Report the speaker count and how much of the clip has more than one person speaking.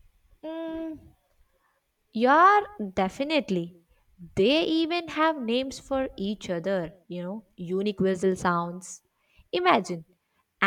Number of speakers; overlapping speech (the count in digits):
1, no overlap